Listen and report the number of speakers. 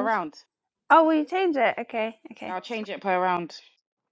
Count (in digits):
2